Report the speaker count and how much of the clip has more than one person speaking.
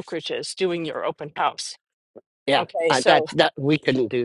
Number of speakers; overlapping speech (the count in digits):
2, about 18%